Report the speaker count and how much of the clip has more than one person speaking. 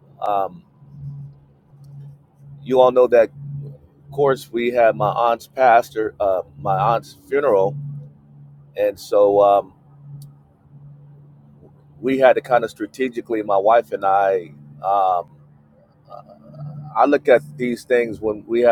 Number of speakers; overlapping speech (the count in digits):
1, no overlap